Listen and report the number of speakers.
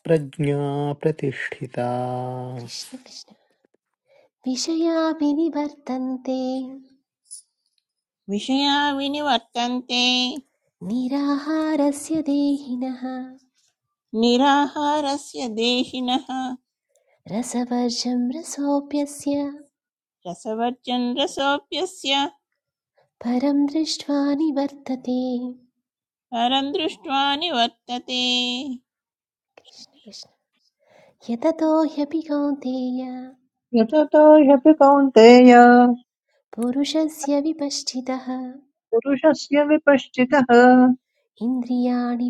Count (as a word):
four